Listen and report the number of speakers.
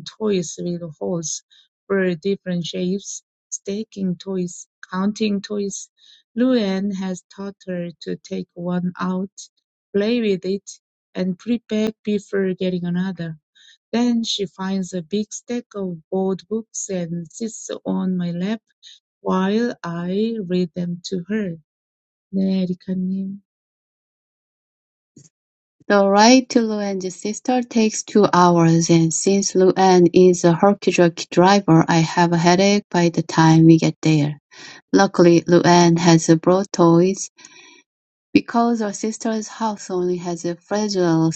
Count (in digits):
2